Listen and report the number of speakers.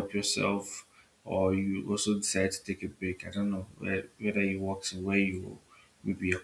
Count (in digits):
1